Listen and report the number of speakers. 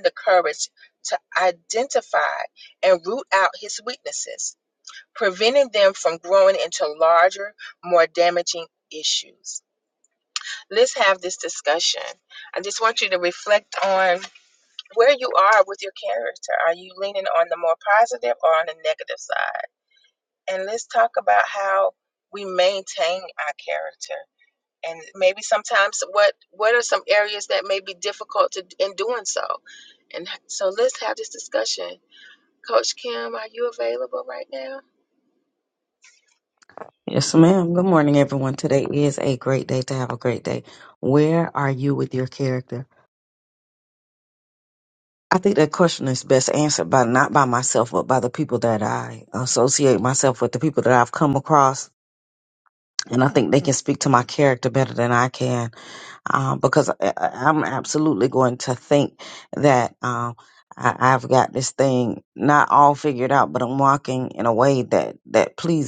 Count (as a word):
two